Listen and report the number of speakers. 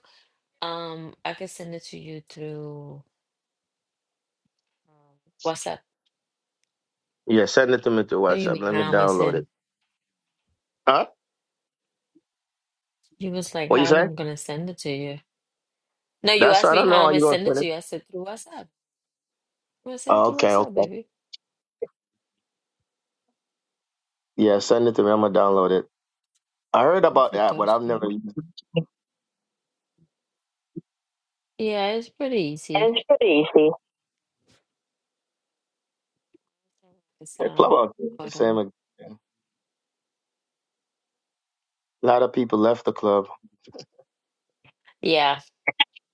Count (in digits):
2